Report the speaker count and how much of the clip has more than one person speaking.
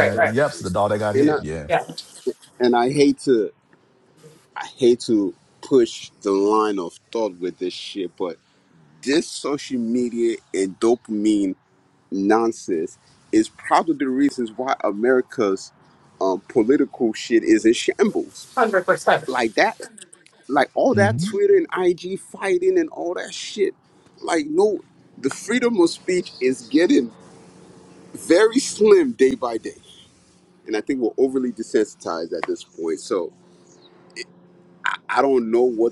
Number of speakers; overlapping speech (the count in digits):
3, about 3%